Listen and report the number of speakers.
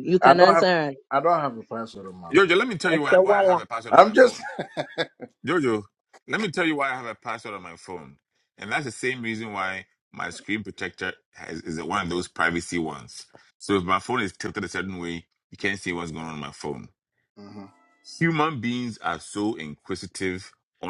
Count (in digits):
3